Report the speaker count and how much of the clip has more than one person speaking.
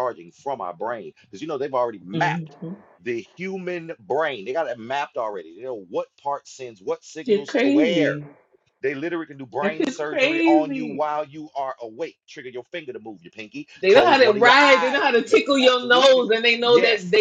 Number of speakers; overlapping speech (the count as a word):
two, about 32%